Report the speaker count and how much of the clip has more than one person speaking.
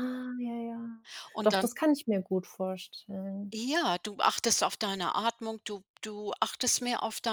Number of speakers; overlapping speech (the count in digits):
2, about 3%